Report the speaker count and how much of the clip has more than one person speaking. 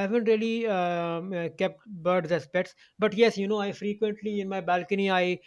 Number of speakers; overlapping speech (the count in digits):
1, no overlap